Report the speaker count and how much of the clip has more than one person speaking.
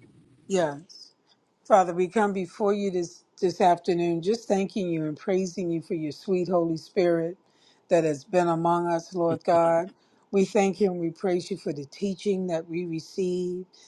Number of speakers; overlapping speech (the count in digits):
1, no overlap